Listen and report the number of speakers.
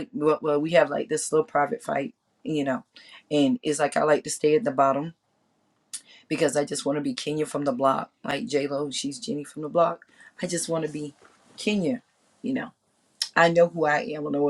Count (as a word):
one